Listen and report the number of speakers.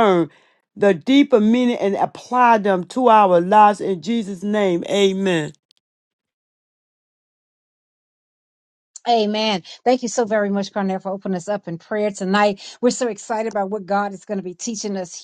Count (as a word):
two